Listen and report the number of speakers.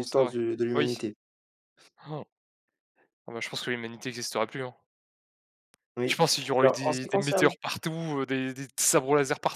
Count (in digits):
2